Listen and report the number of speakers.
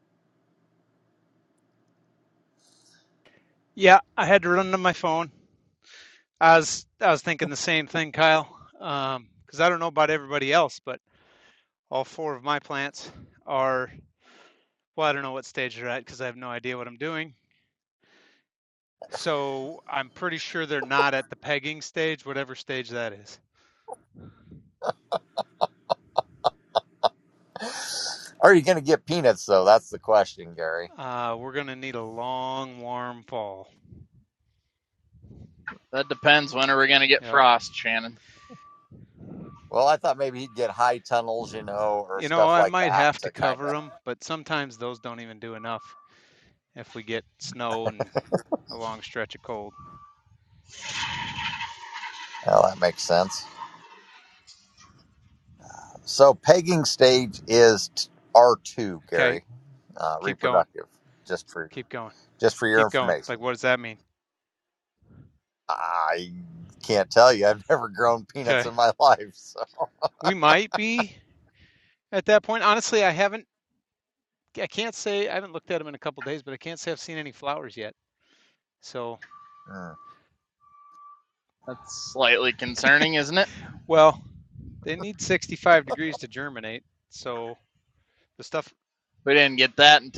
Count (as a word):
three